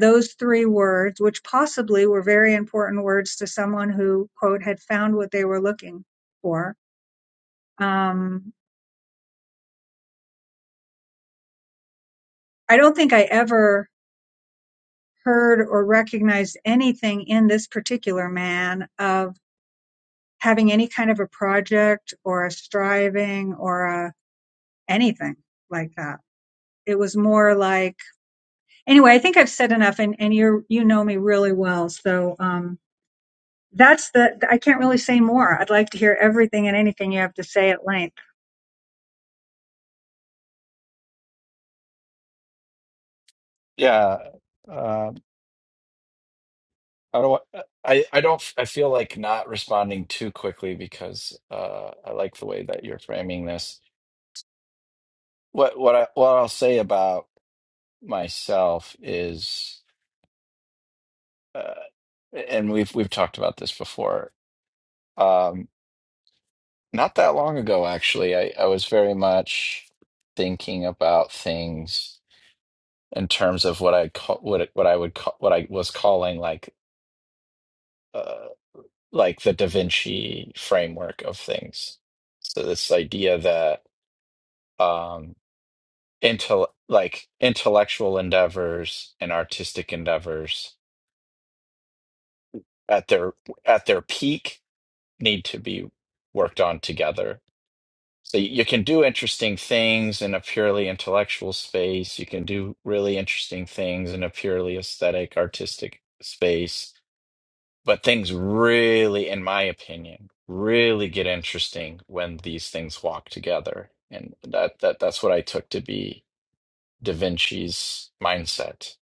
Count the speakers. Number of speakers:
2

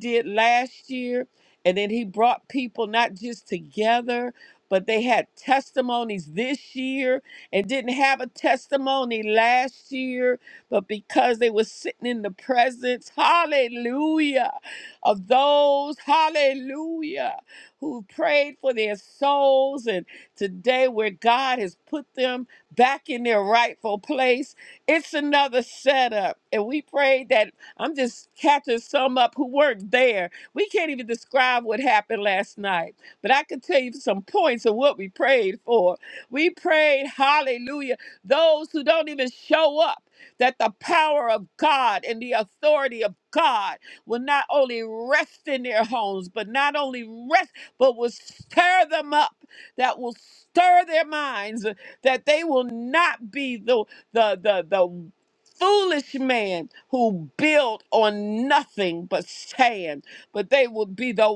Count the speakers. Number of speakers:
1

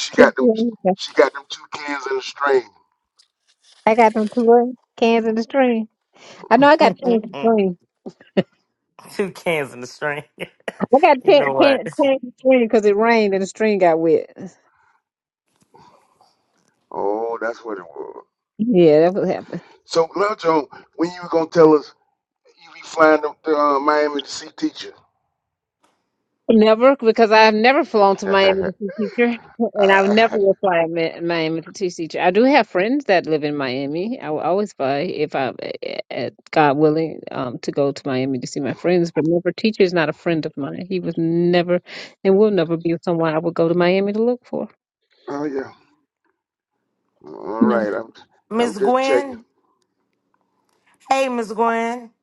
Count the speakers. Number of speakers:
3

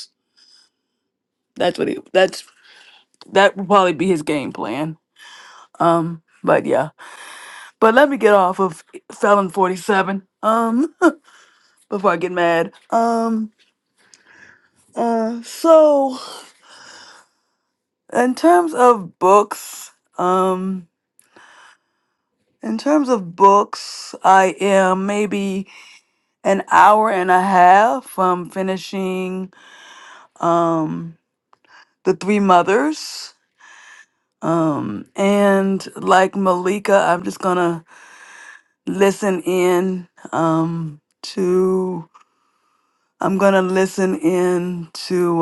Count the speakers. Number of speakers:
1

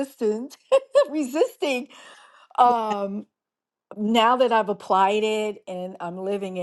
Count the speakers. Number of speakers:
1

